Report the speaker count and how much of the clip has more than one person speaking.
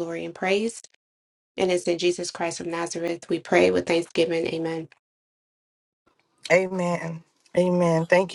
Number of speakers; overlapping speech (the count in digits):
2, no overlap